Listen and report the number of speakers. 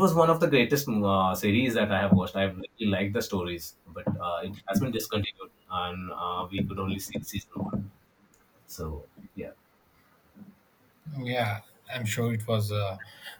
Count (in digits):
2